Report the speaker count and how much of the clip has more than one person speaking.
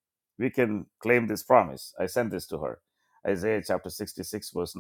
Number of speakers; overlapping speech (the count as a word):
one, no overlap